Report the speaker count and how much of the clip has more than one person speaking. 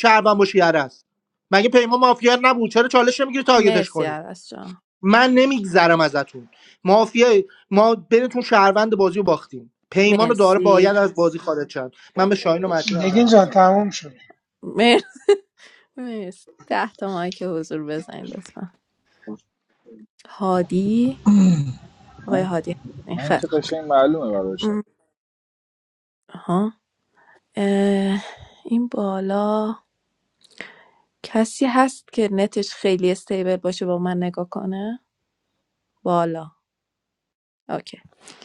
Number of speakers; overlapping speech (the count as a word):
four, about 6%